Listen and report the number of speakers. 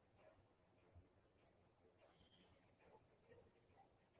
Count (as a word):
zero